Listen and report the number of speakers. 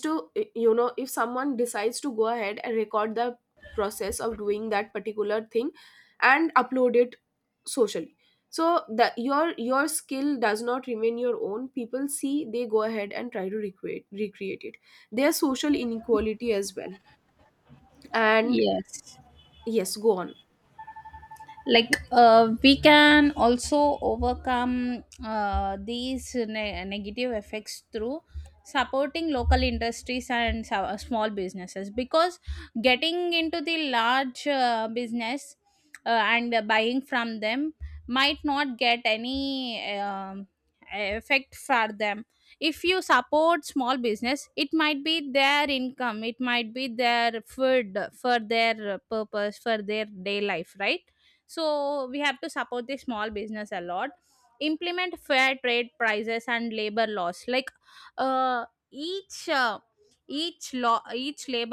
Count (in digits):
2